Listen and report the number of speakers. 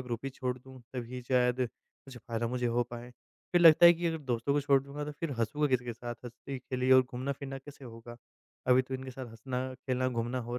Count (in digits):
1